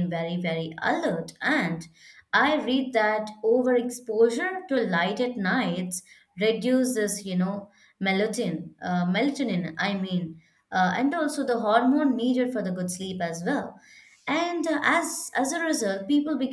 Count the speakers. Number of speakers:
1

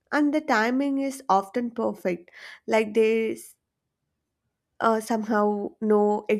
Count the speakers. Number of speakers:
1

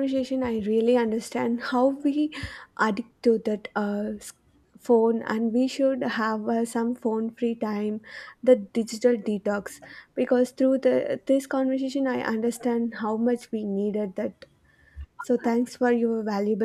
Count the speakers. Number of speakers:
1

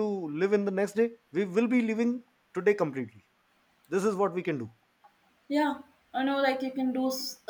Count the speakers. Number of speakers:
2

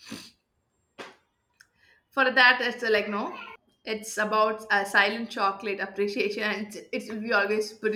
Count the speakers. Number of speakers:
1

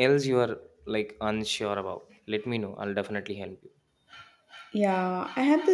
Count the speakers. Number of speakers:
2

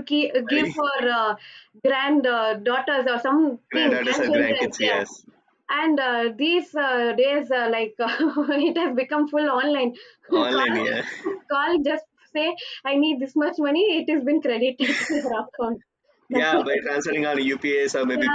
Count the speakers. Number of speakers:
2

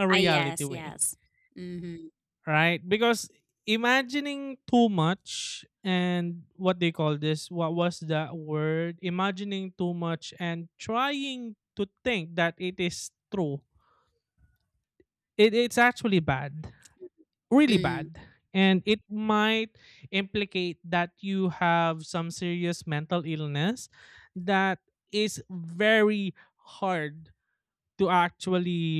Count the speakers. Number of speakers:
2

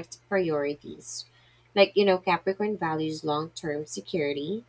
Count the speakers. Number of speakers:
1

